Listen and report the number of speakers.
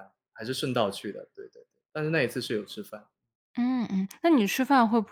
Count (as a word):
two